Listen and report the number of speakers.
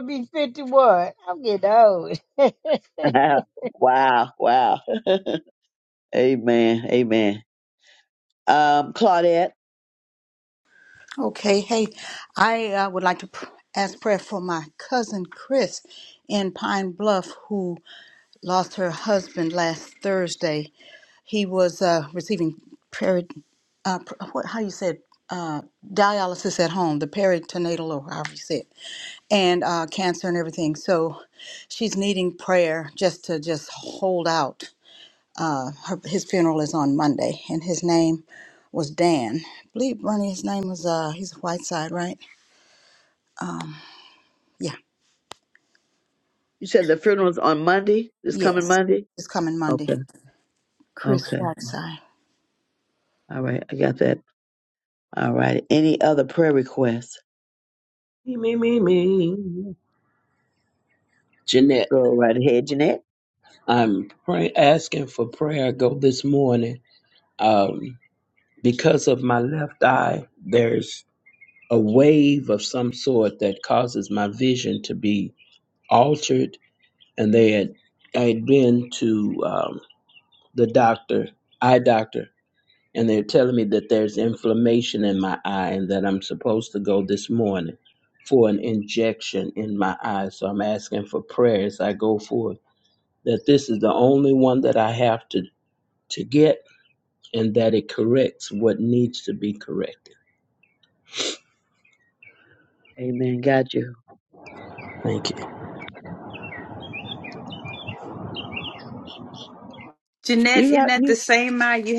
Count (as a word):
five